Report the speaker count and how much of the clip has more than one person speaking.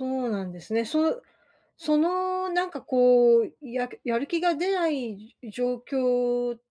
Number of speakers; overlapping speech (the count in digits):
1, no overlap